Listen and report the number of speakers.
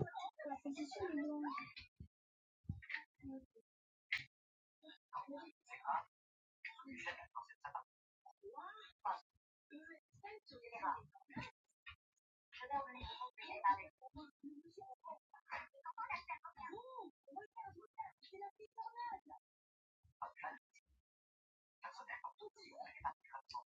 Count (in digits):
0